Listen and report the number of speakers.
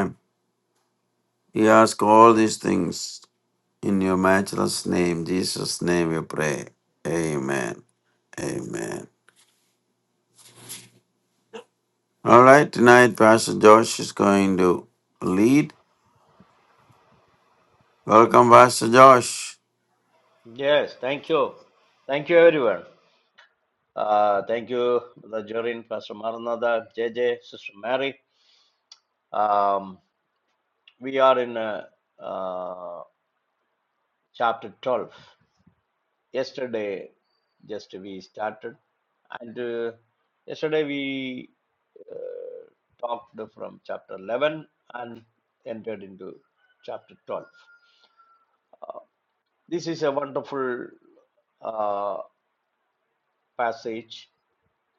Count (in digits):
2